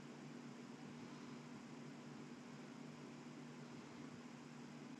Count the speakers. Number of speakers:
zero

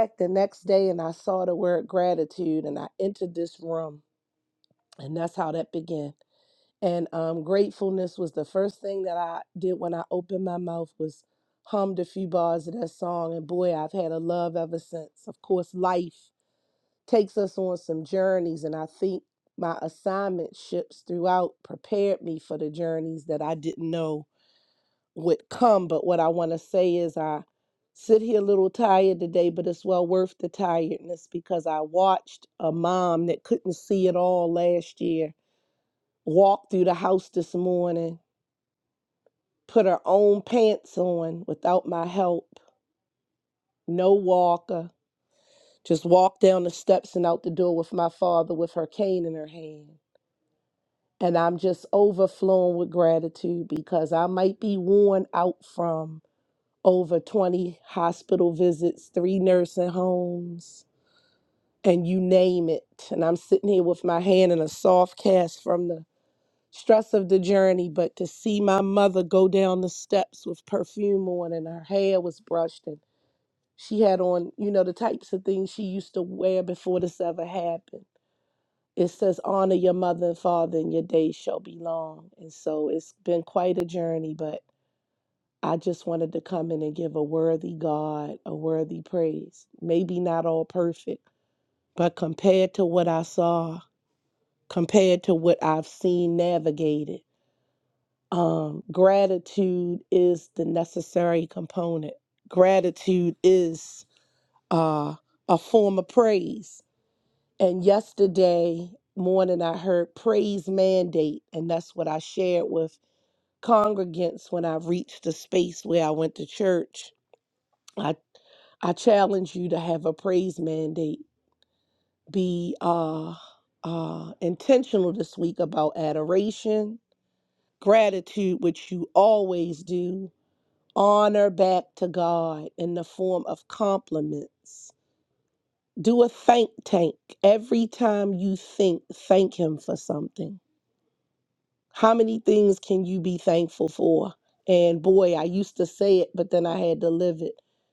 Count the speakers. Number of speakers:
one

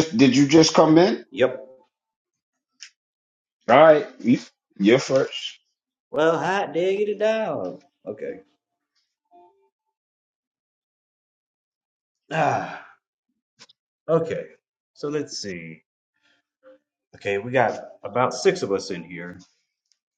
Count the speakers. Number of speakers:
two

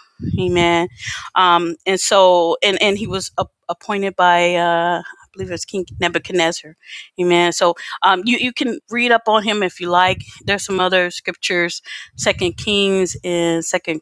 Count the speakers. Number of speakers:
one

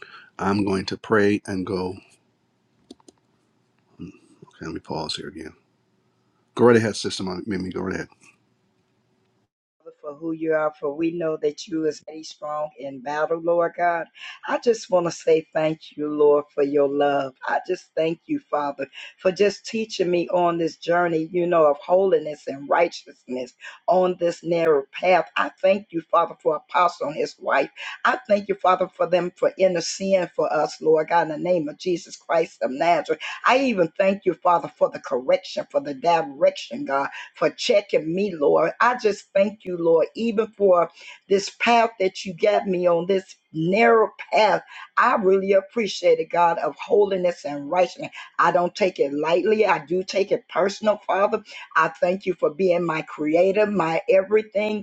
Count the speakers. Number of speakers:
two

